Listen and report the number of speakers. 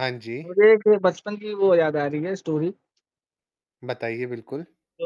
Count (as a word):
two